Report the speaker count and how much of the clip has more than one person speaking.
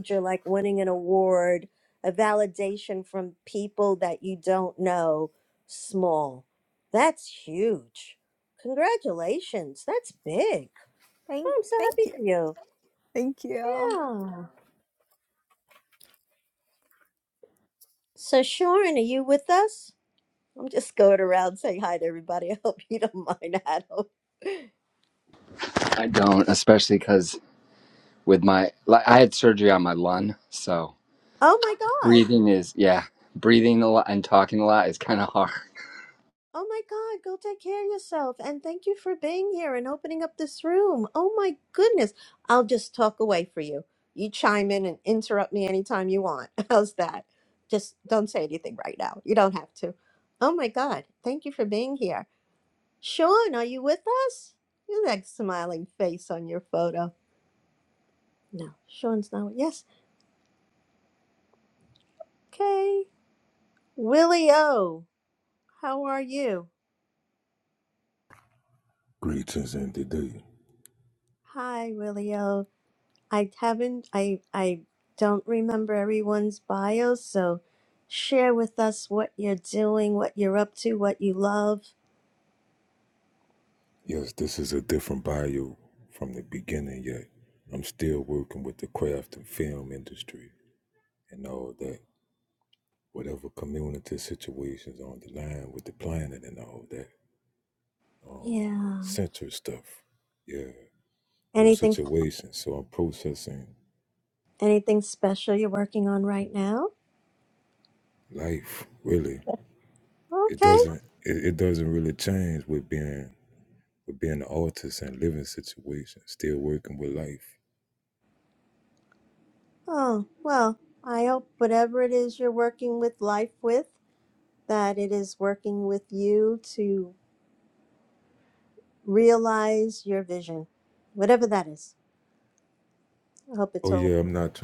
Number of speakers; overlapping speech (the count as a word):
four, about 2%